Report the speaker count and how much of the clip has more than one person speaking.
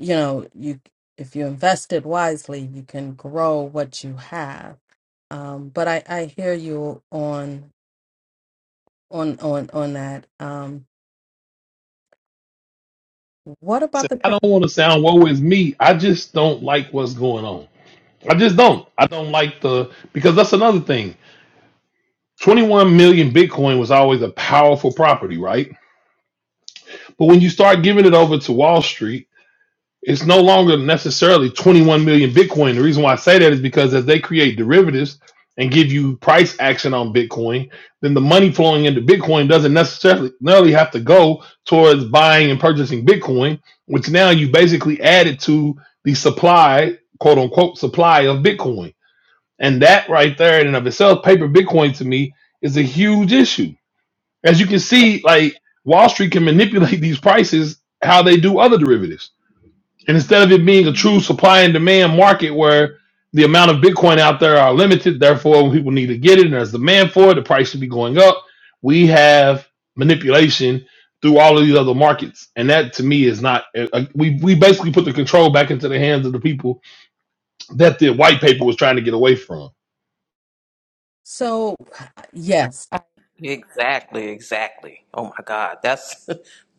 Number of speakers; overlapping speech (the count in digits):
3, about 1%